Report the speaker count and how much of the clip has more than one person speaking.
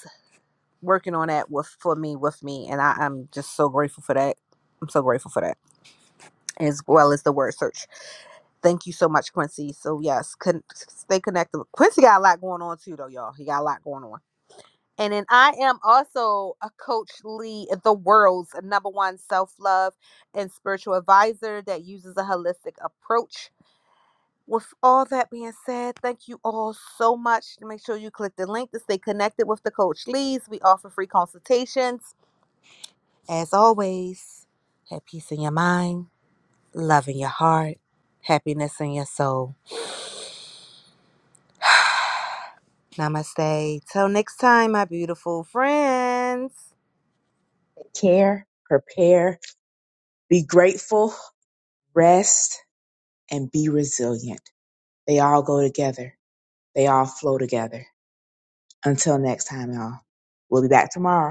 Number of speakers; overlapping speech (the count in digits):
2, no overlap